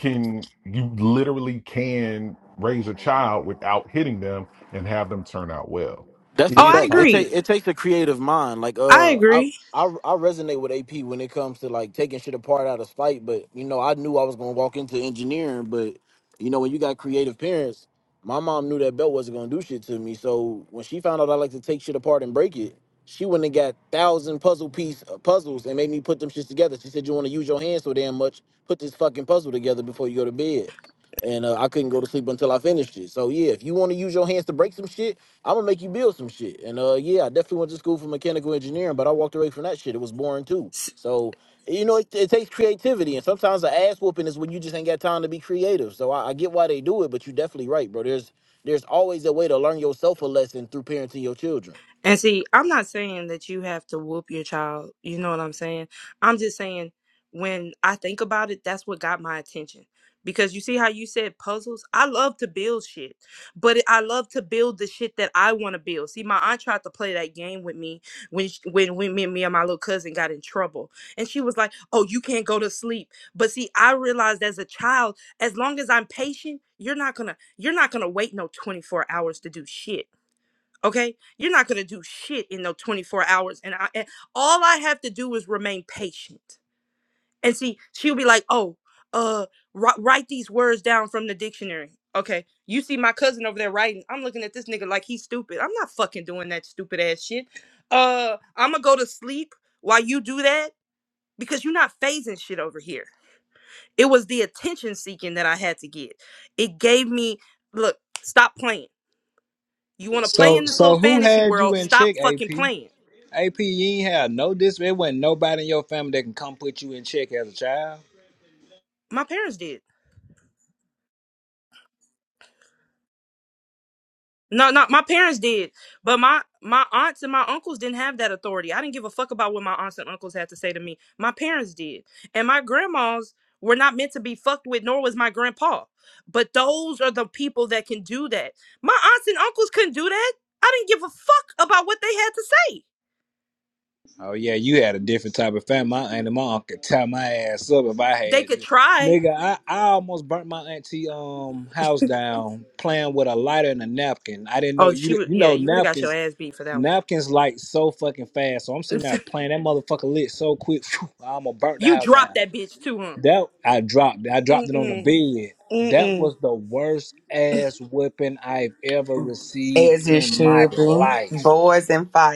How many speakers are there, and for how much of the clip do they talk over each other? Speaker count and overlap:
5, about 5%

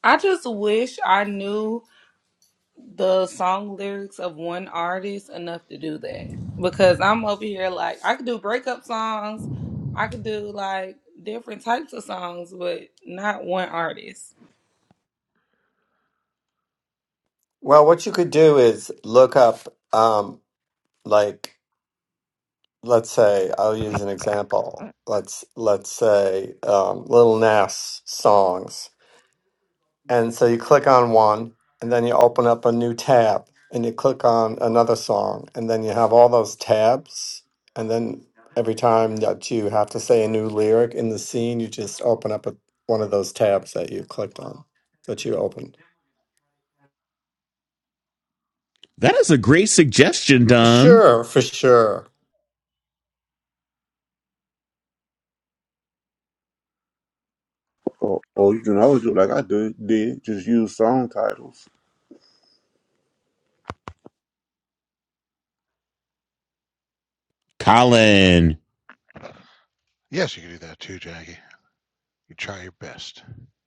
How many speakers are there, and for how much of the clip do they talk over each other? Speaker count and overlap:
5, about 1%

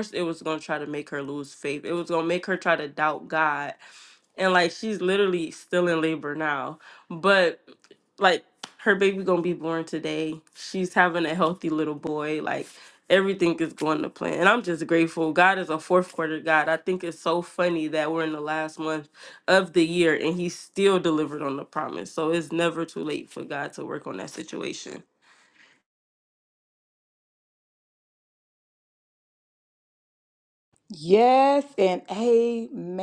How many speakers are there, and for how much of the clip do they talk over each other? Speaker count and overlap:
2, no overlap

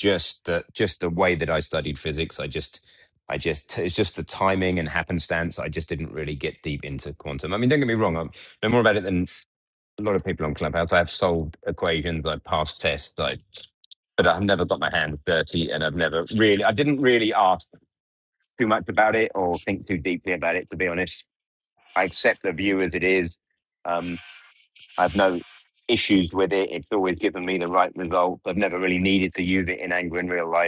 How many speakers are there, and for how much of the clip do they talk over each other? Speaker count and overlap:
1, no overlap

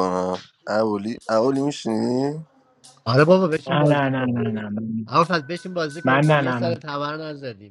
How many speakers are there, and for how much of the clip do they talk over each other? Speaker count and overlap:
3, about 19%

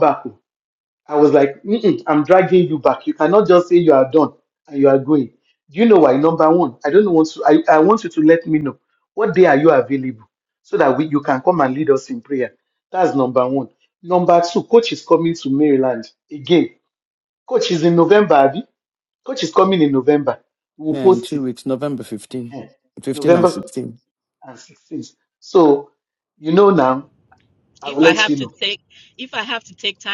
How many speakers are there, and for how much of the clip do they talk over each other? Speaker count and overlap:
3, about 6%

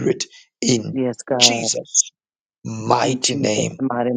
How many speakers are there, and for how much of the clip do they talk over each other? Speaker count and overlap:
2, about 24%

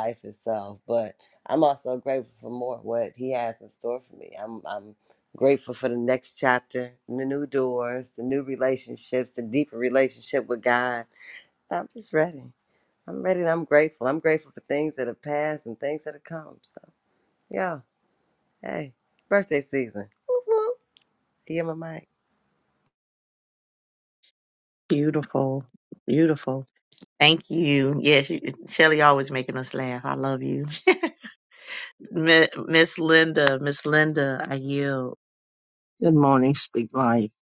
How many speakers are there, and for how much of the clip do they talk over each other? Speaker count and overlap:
3, no overlap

